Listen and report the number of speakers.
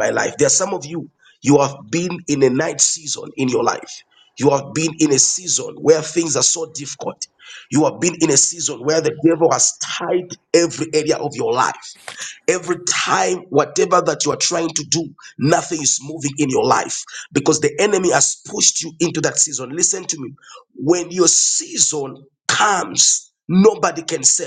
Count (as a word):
one